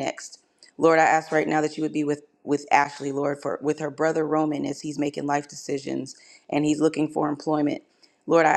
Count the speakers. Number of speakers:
1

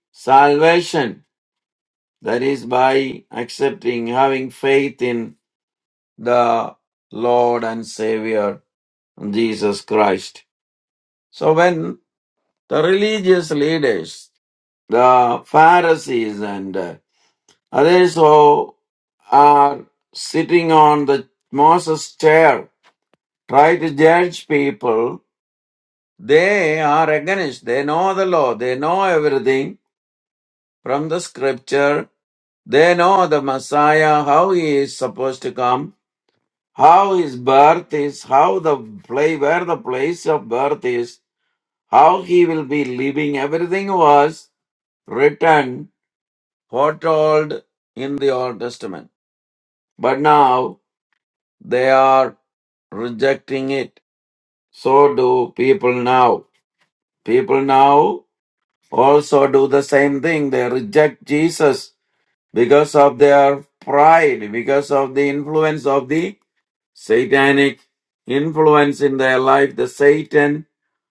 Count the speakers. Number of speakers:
1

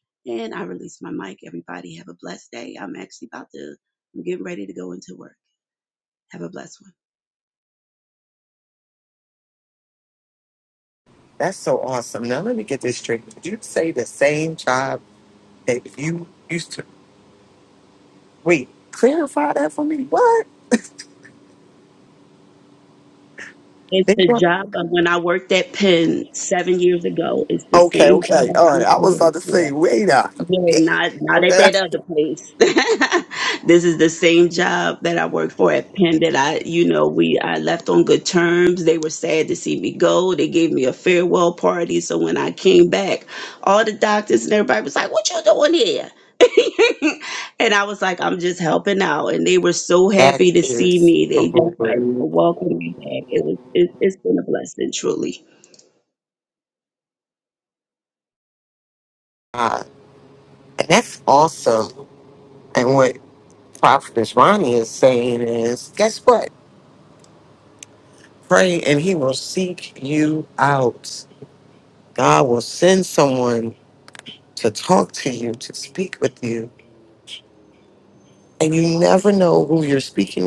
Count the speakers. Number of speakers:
2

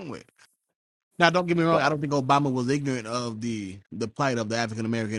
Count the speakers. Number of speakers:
1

